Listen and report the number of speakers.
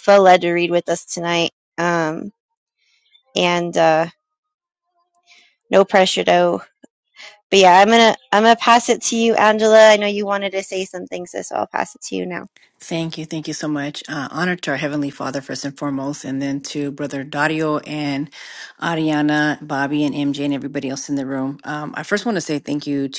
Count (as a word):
two